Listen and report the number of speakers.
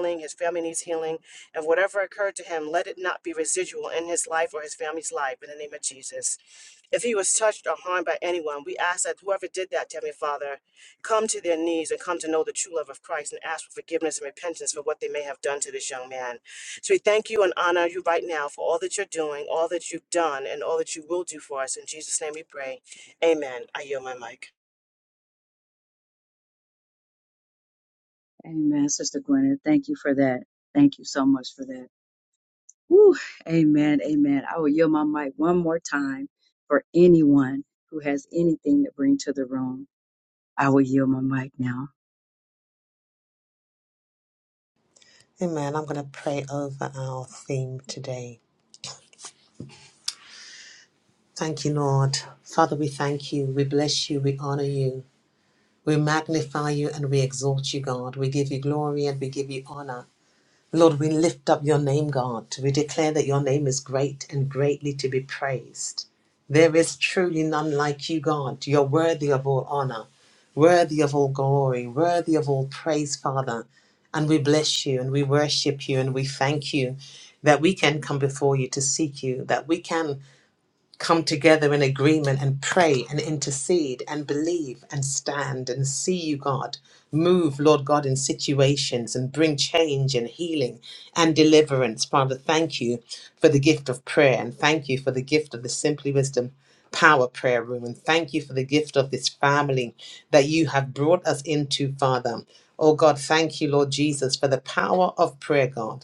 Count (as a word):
three